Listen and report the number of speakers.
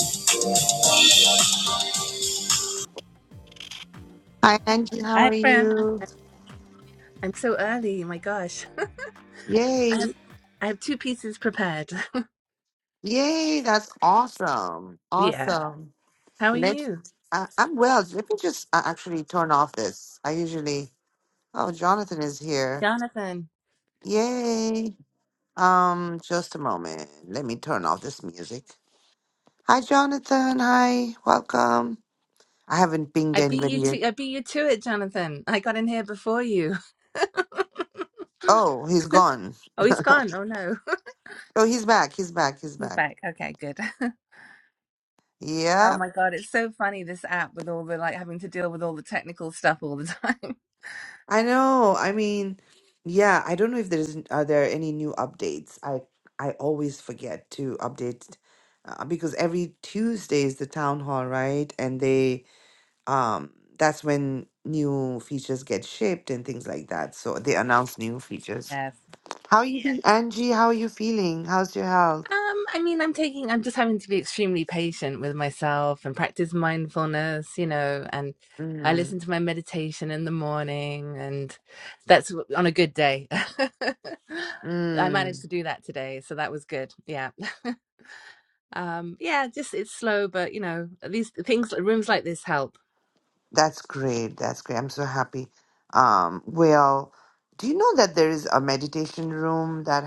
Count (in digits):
2